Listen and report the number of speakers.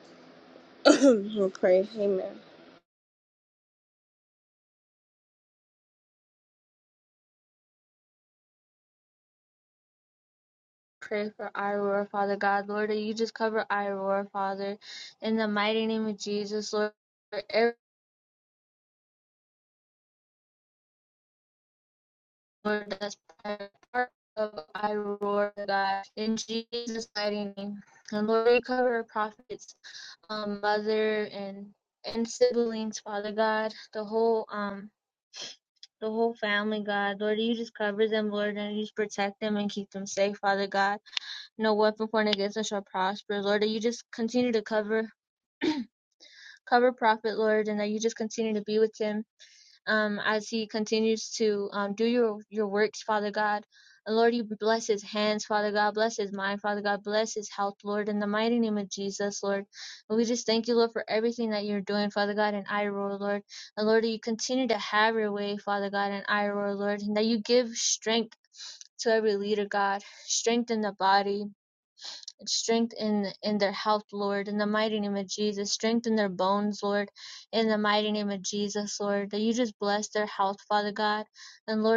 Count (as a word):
two